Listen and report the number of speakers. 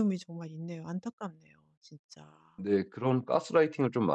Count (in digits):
2